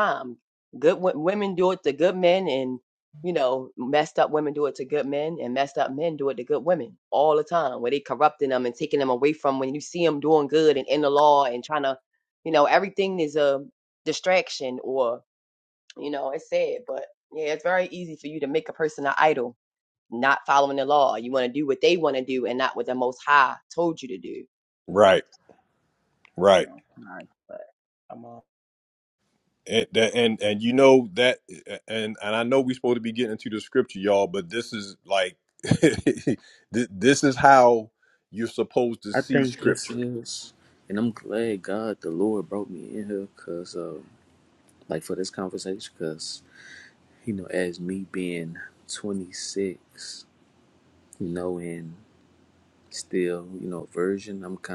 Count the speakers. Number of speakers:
three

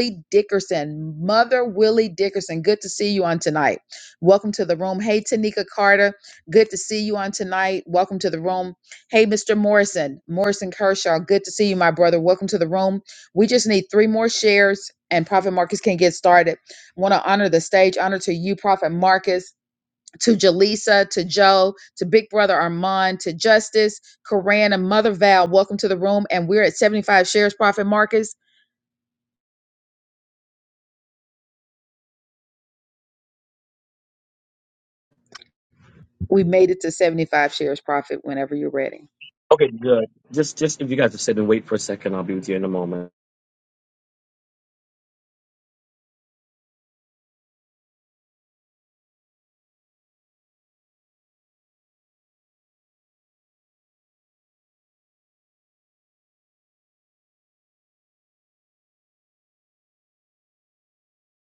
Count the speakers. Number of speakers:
two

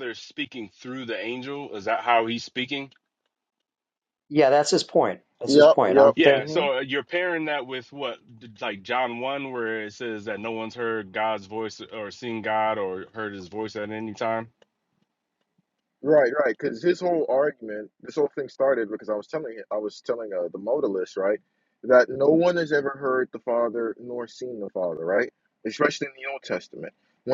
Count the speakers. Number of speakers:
three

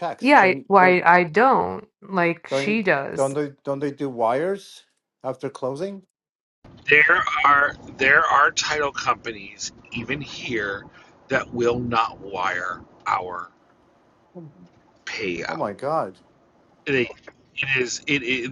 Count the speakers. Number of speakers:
three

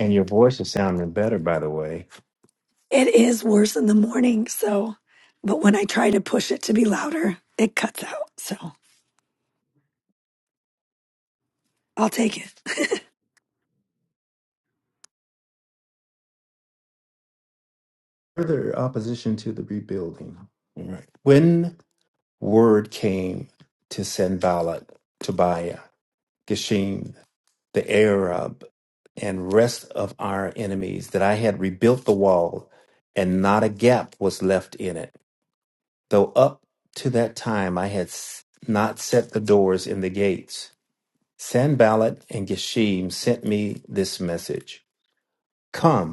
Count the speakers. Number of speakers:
two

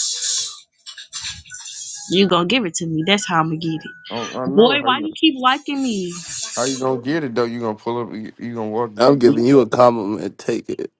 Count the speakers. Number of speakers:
three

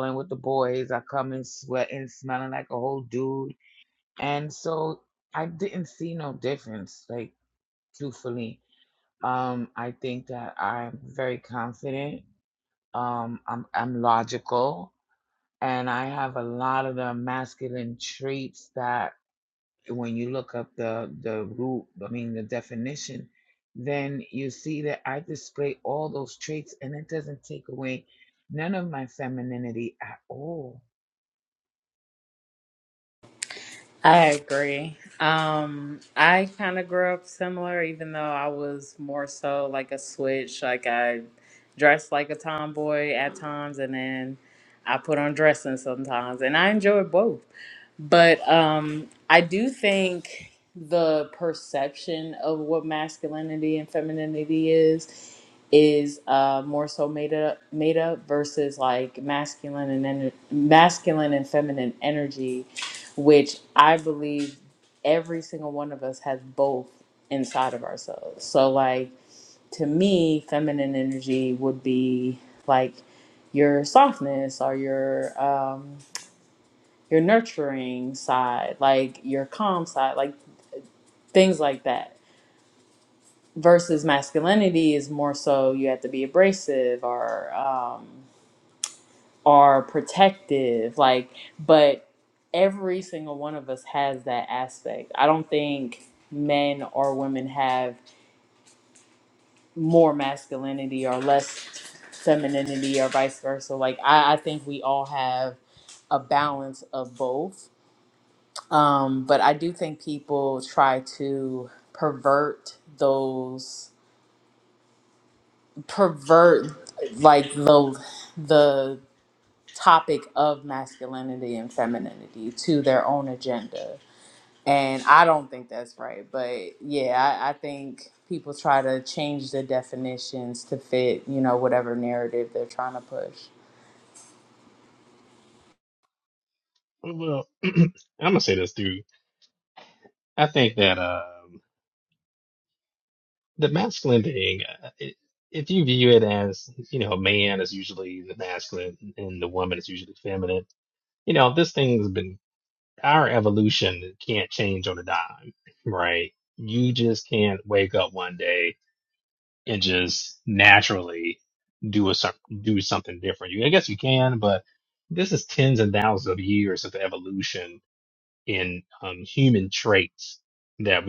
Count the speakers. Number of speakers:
three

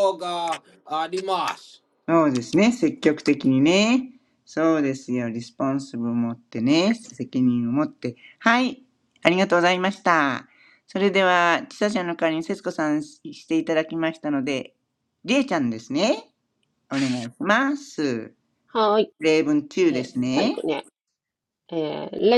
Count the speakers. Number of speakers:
three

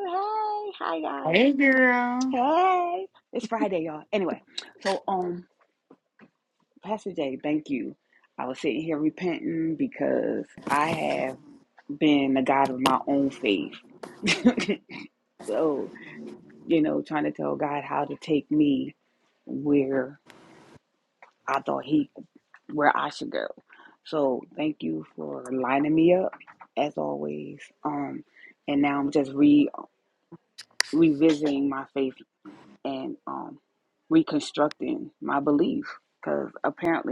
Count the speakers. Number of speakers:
two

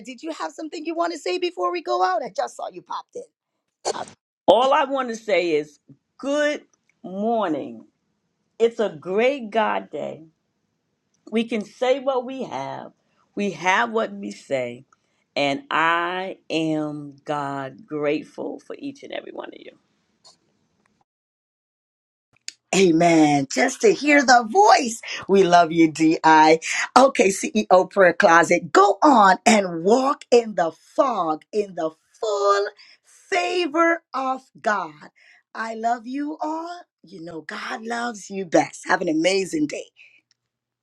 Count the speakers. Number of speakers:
two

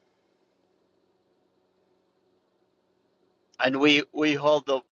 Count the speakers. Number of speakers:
one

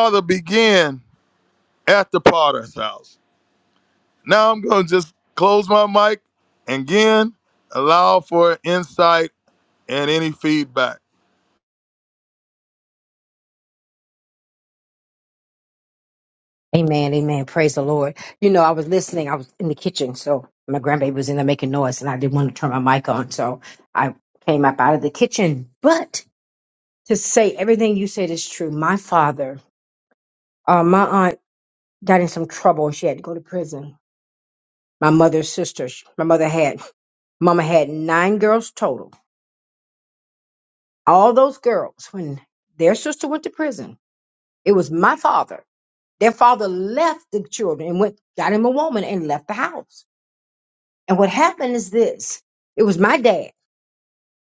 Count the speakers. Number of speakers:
two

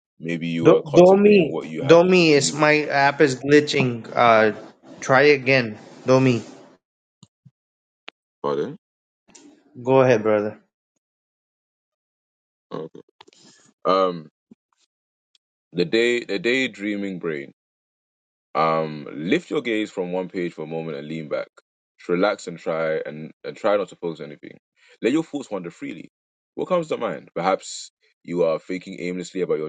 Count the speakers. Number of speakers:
two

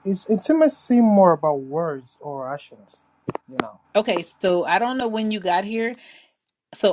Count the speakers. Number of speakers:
two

